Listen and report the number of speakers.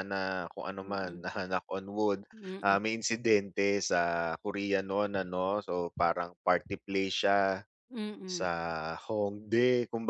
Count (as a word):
two